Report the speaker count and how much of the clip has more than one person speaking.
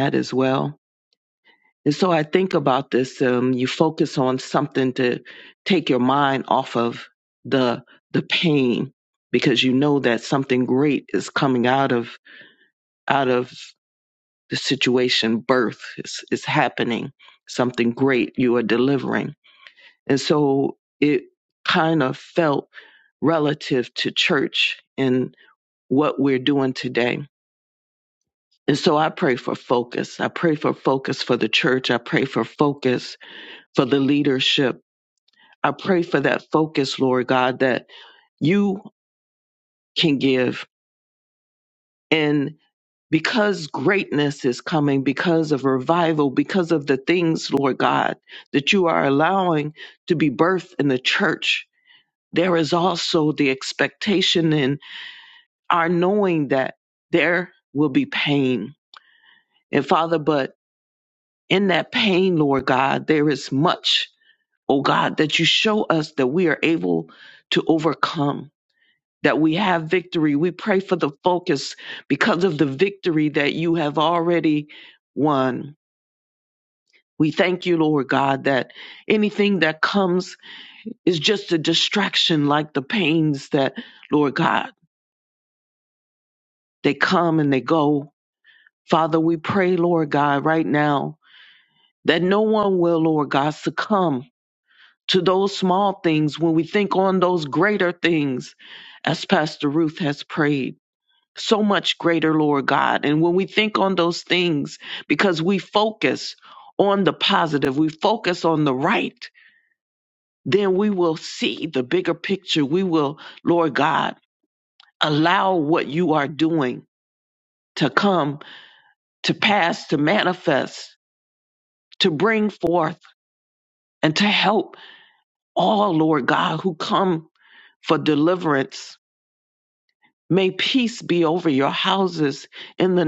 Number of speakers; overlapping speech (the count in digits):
1, no overlap